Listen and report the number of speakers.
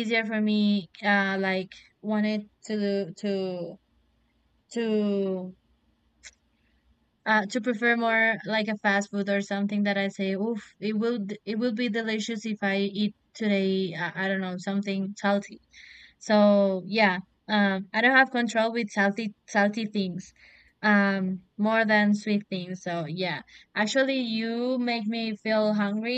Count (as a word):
one